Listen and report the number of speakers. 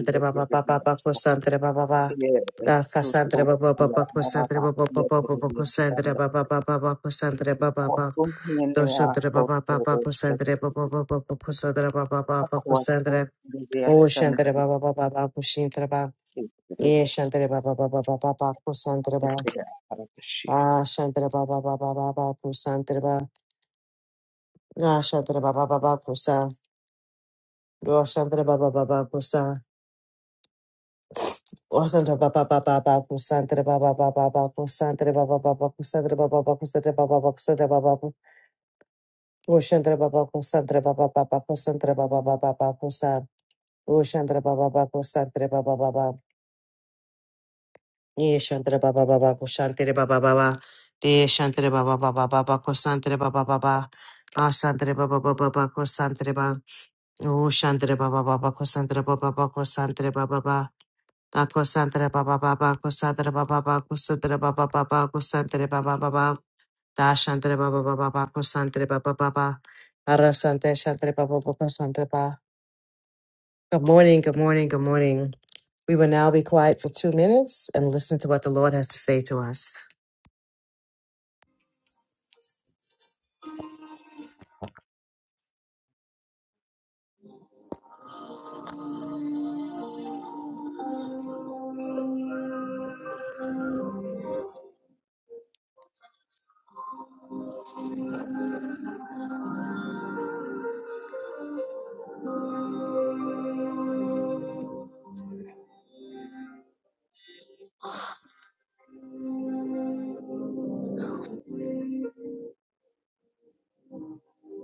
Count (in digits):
2